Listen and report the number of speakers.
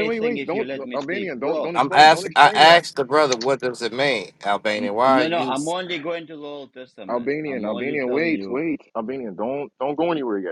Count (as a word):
three